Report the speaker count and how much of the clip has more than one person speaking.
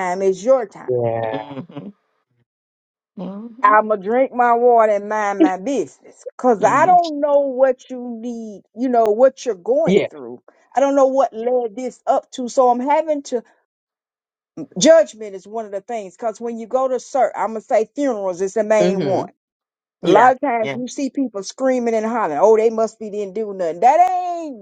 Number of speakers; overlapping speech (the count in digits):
3, about 9%